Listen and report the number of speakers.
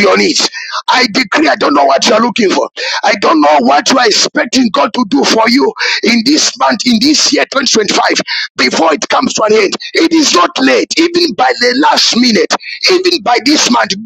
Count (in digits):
1